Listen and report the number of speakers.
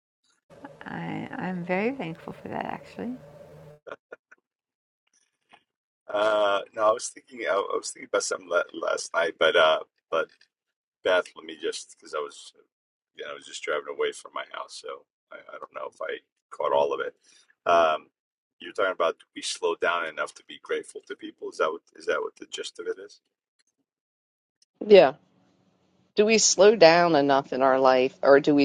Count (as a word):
three